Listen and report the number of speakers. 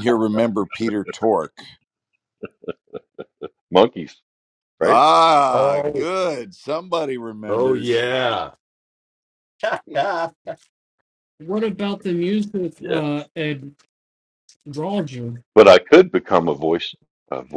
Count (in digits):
4